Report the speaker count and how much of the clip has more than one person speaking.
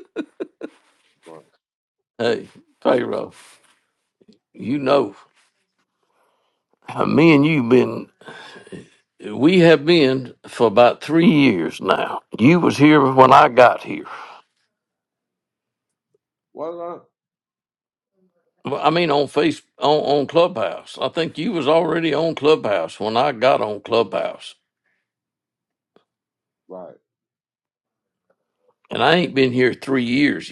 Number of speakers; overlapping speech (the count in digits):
2, no overlap